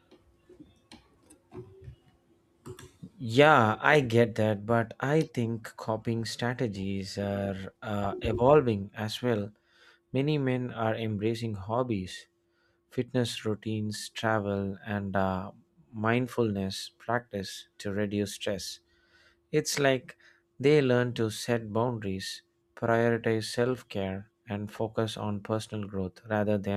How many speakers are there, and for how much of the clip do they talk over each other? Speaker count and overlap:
1, no overlap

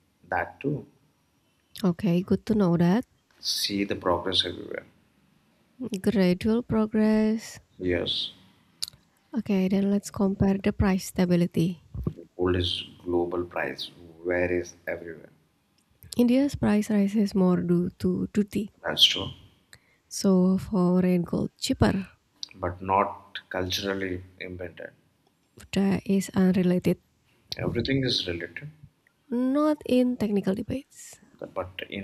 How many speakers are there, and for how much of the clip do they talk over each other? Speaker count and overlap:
2, no overlap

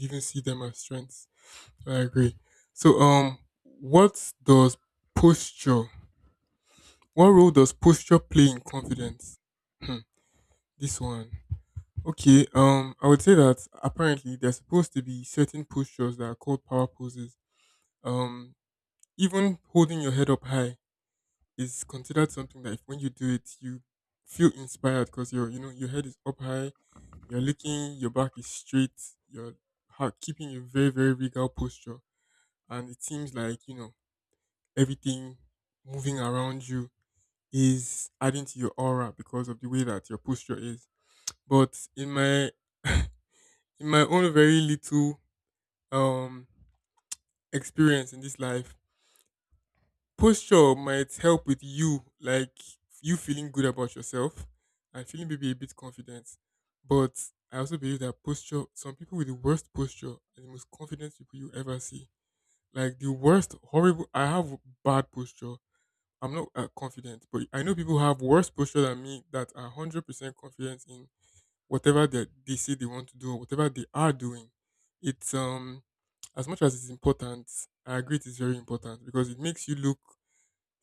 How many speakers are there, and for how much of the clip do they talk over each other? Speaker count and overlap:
1, no overlap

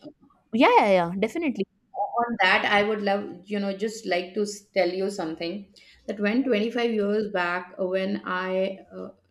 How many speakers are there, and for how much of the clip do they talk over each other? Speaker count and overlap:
2, no overlap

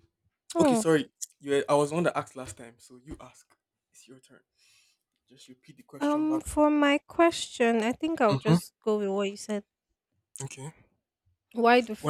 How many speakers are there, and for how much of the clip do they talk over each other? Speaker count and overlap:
2, about 9%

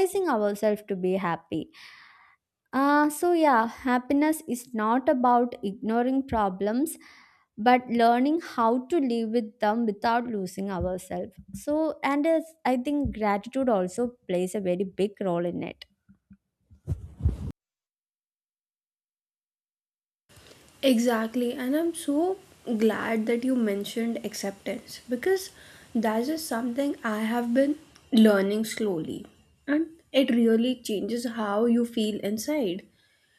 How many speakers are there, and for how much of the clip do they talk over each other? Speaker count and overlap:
2, no overlap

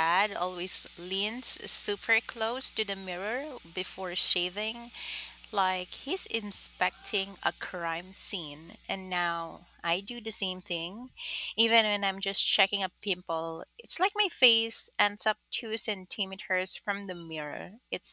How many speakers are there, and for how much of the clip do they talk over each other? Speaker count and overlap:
1, no overlap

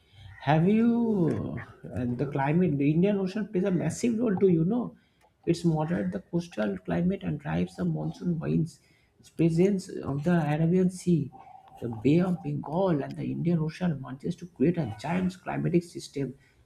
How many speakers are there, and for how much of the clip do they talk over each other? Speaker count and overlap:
1, no overlap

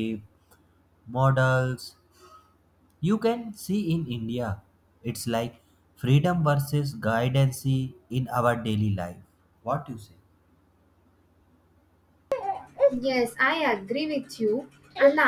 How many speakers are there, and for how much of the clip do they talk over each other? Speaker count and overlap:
2, no overlap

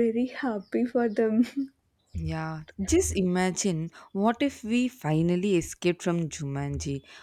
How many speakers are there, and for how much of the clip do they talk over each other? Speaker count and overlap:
2, no overlap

